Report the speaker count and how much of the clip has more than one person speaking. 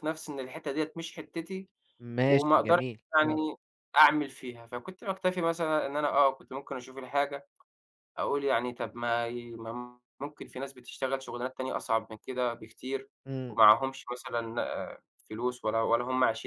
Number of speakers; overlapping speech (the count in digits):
2, about 7%